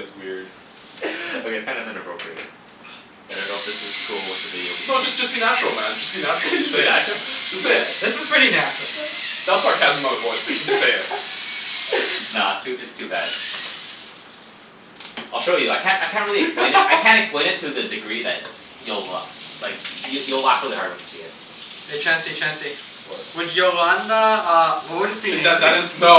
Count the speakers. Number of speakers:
3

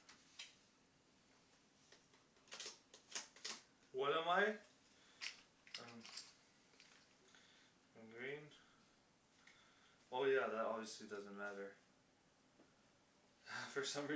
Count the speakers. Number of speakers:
1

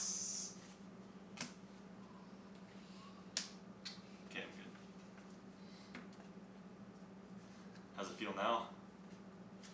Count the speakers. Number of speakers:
1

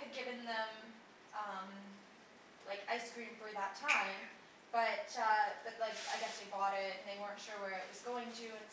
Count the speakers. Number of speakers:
1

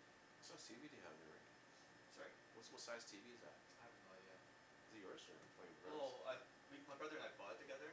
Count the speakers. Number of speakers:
2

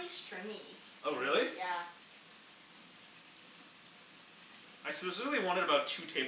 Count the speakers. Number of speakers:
2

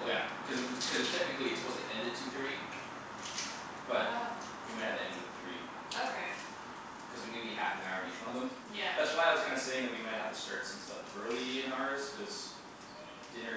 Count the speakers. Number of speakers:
2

